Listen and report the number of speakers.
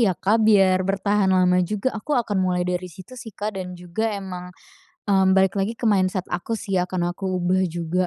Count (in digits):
1